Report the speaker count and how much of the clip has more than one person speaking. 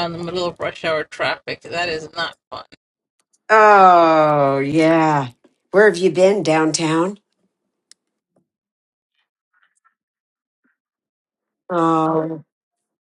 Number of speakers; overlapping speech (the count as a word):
two, no overlap